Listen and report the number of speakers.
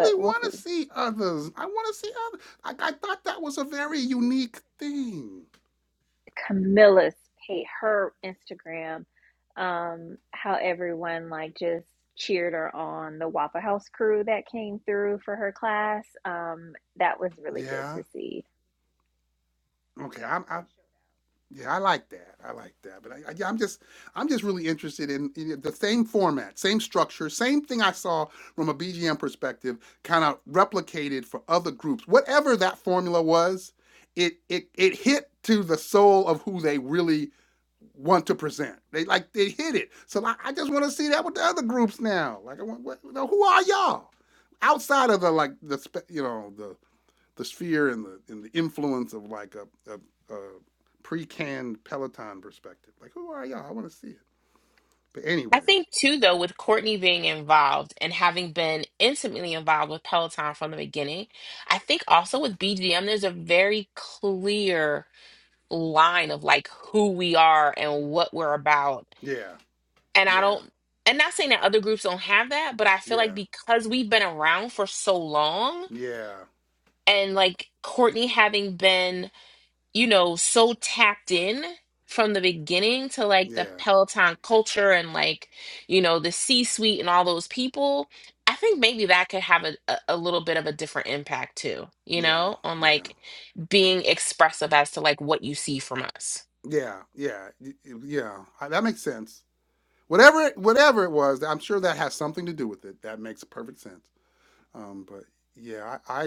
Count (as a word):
three